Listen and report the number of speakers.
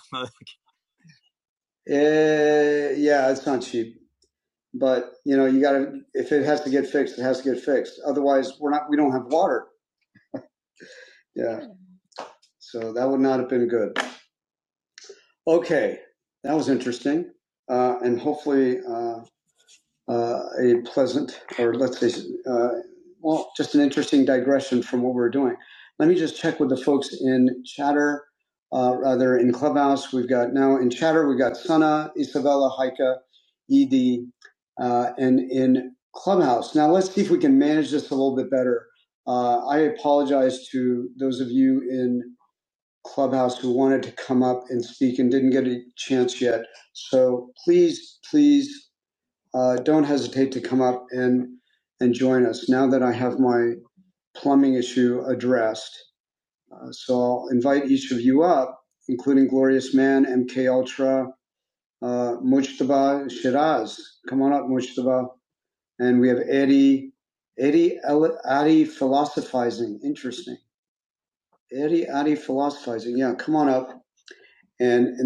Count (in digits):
1